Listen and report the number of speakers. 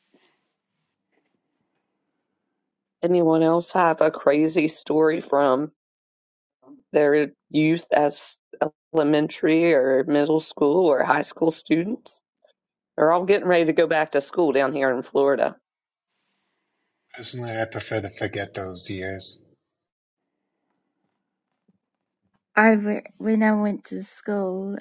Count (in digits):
3